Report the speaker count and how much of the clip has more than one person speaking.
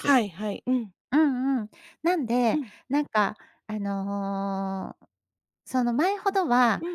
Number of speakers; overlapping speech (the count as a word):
two, about 6%